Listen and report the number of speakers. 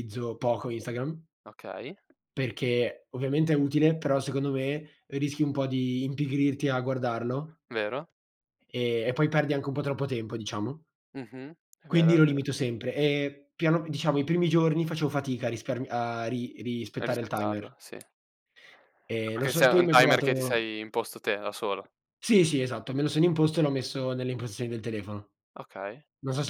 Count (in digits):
2